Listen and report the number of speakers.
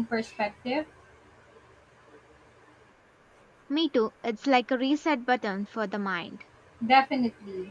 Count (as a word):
two